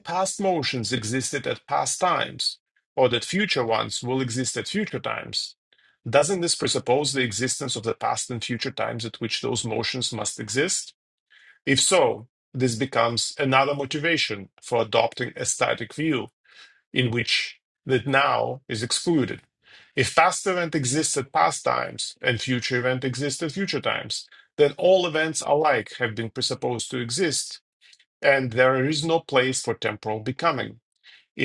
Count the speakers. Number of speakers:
1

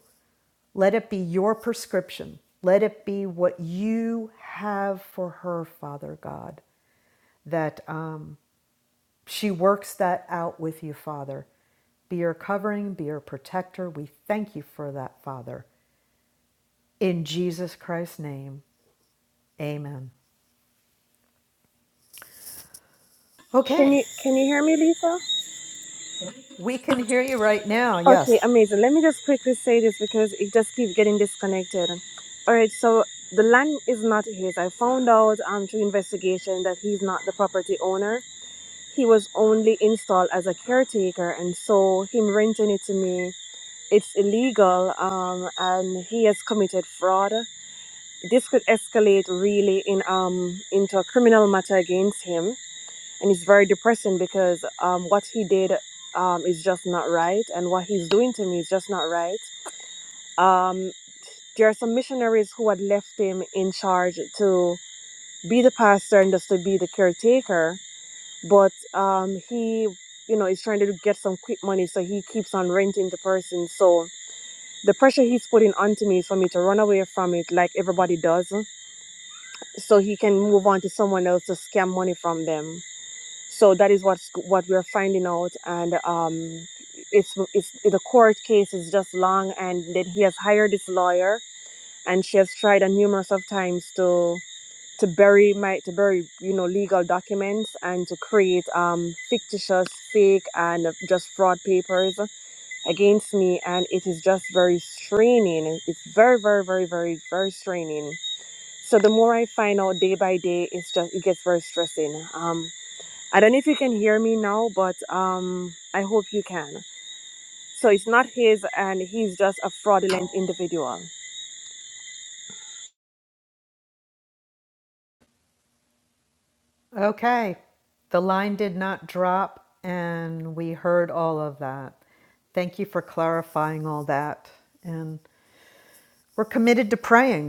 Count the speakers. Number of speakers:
2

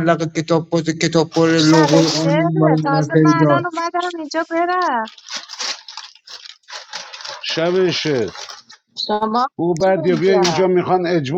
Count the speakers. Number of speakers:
3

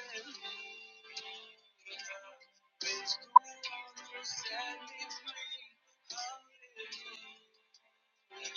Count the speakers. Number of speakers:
0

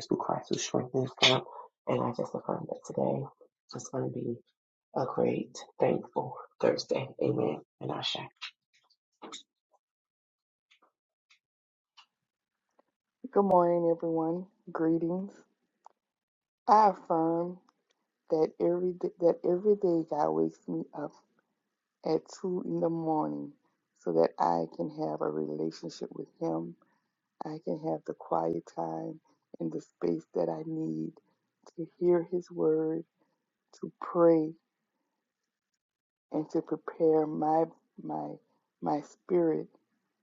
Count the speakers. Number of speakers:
2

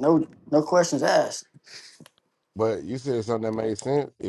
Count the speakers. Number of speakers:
2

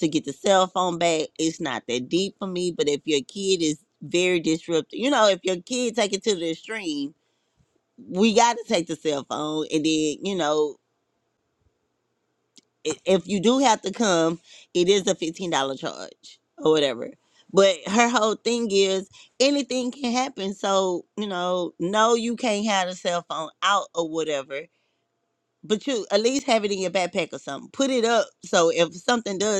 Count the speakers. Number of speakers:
1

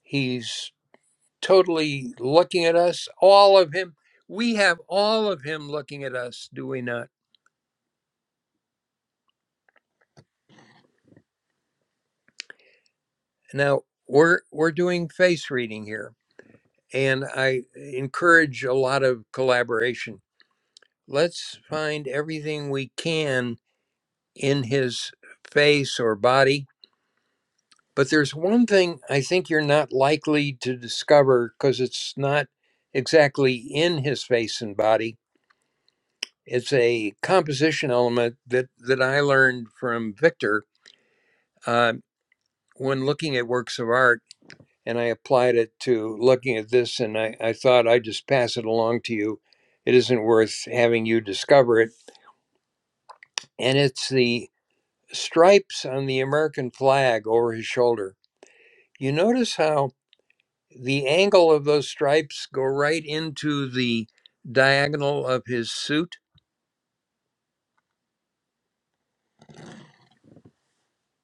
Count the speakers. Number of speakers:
1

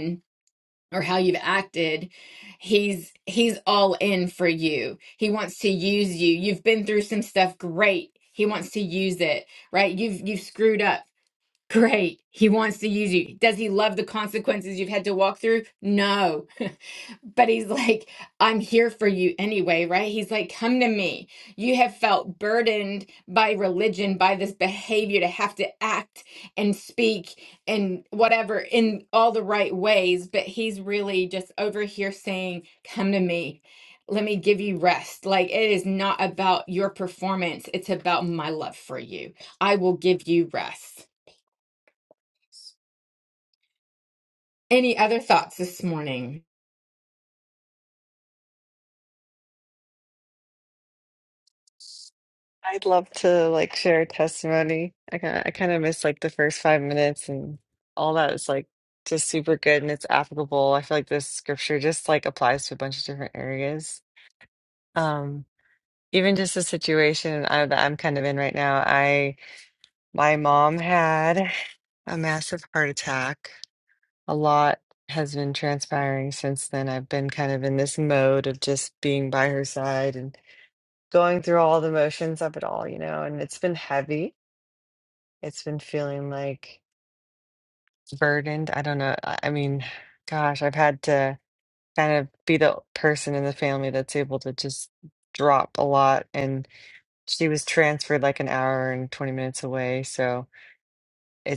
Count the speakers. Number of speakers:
2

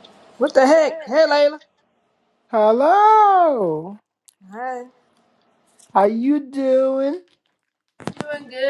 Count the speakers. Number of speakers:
2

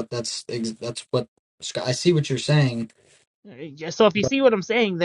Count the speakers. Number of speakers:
2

